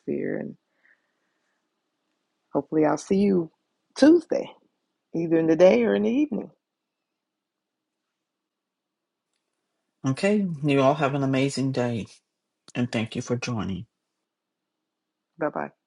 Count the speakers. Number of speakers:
2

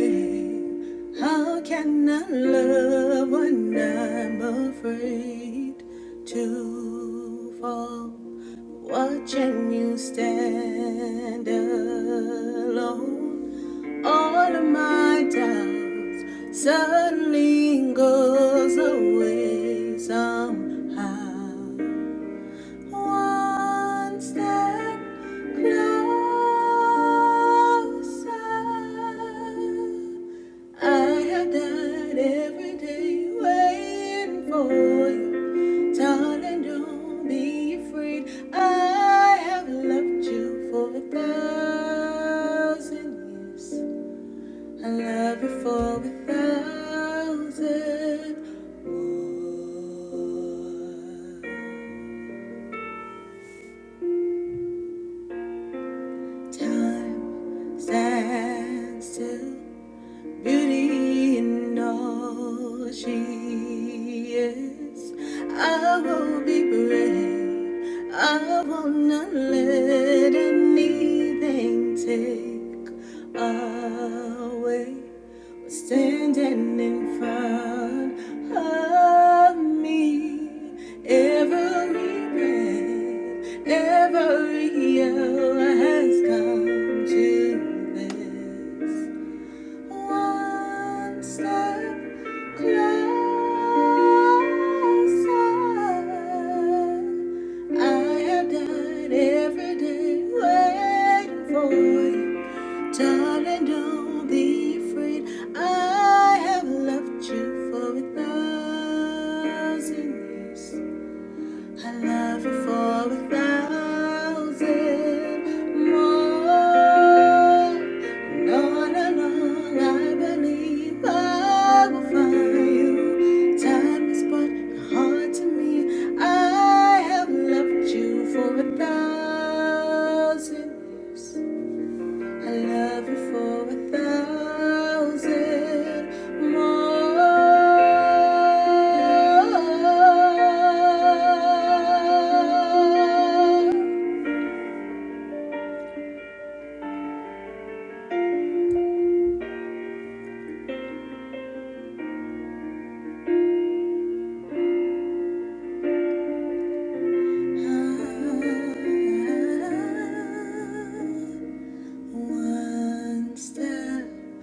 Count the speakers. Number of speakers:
1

